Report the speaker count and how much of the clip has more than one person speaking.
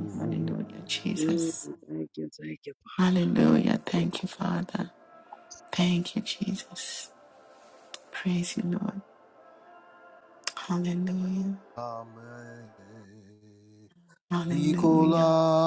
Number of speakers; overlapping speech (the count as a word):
three, about 8%